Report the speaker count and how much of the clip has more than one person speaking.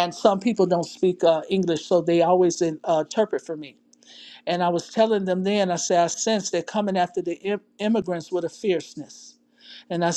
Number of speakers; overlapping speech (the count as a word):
one, no overlap